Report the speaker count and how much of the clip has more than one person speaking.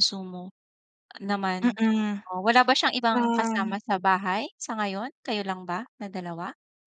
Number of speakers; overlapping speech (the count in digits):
2, about 11%